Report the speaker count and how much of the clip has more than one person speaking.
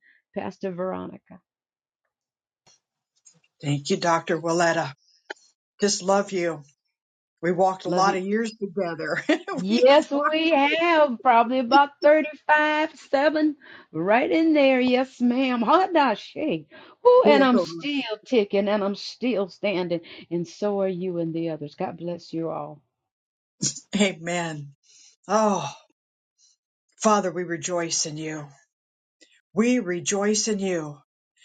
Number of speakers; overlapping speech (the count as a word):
two, about 5%